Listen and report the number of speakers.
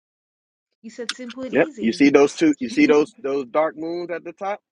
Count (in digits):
2